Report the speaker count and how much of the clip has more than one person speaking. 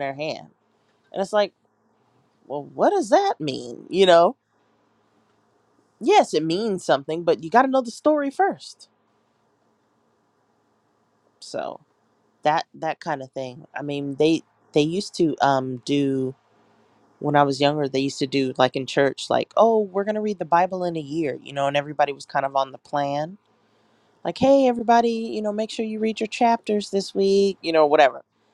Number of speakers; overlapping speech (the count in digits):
1, no overlap